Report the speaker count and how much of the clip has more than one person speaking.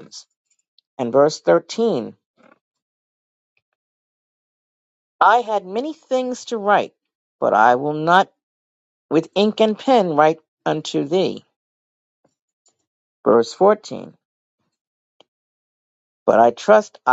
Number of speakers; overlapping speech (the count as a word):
one, no overlap